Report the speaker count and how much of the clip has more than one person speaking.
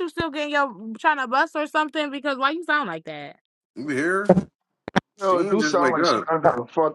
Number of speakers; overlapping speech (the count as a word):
three, about 13%